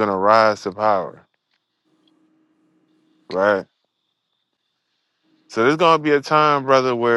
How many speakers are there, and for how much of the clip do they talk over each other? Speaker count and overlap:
1, no overlap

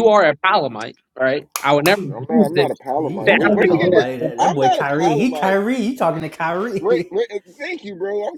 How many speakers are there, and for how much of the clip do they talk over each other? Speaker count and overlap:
3, about 43%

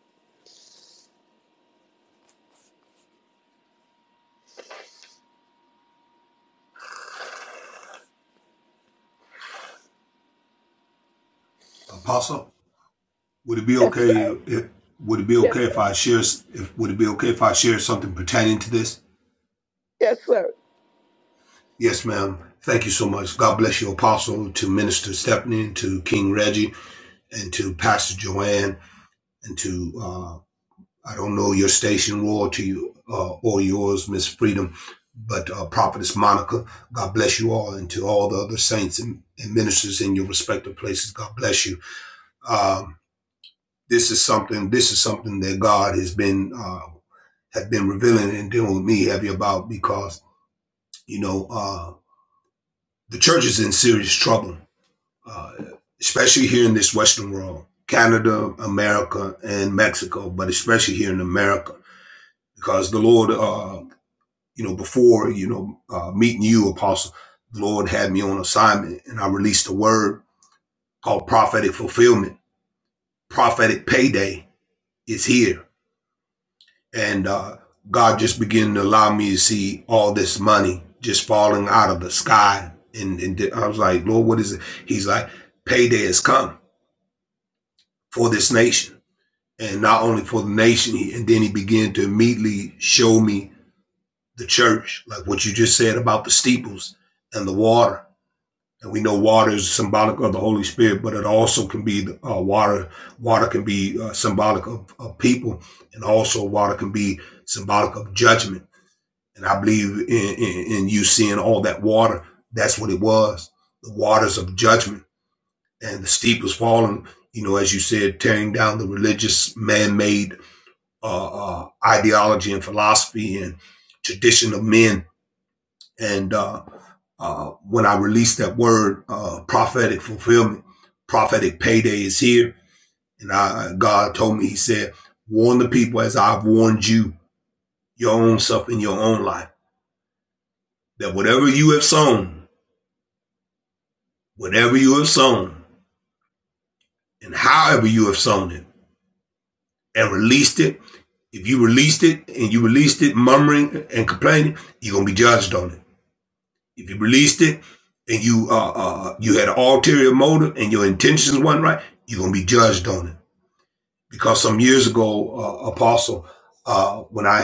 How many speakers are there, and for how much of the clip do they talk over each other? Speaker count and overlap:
2, under 1%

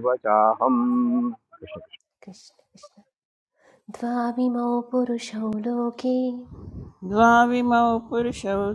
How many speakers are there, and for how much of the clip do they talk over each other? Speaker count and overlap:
3, no overlap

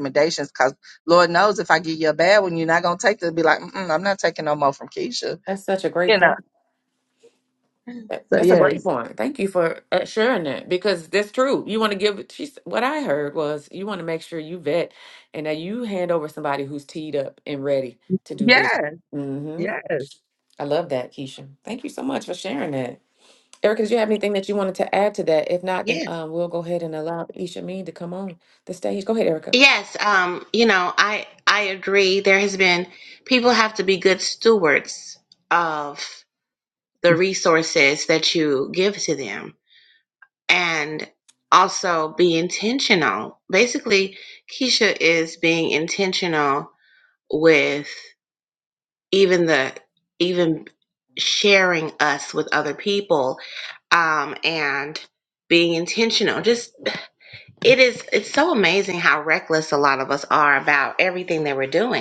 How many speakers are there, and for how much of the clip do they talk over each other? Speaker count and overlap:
3, about 2%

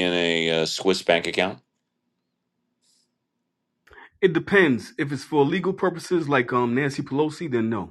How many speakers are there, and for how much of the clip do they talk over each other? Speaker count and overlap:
2, no overlap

